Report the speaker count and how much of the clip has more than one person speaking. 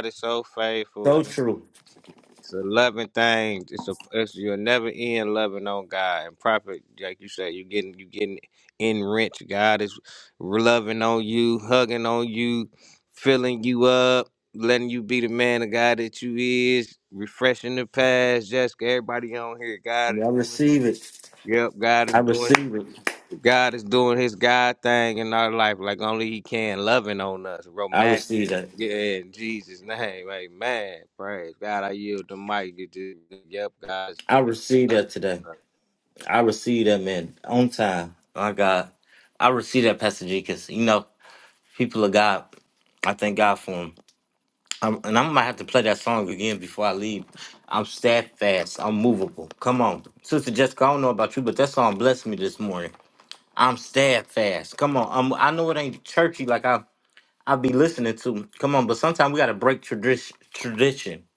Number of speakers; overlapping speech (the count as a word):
two, about 3%